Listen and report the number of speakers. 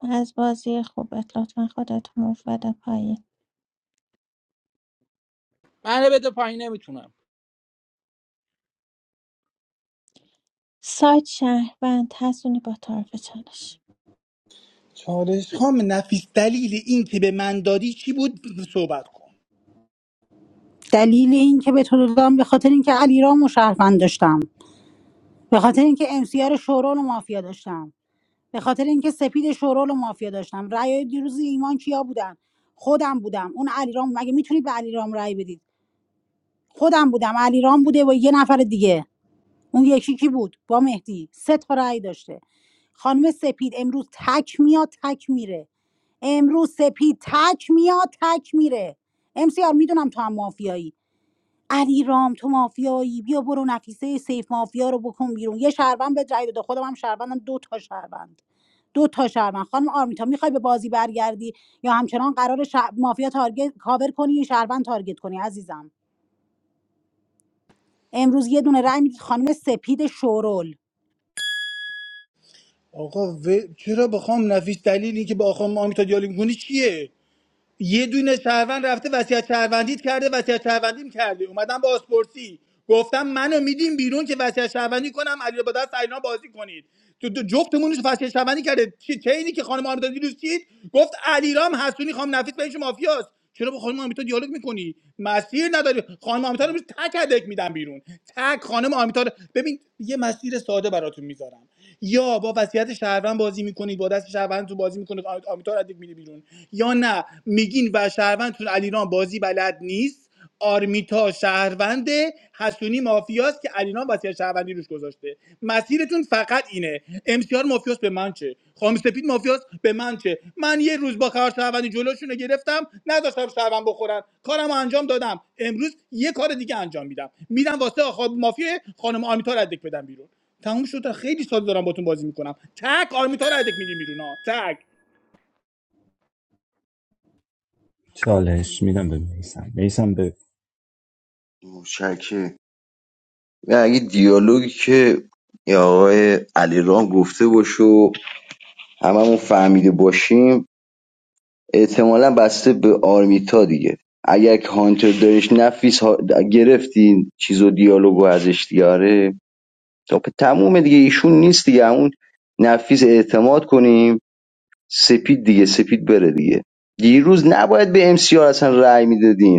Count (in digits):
6